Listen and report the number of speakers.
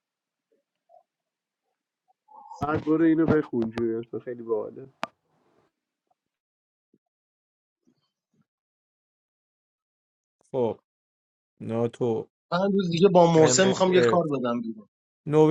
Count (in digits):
3